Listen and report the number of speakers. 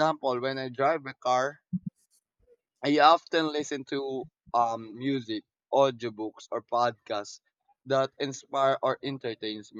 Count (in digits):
1